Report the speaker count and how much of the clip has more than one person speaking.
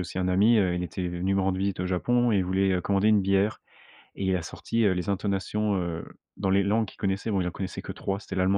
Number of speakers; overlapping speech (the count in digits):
1, no overlap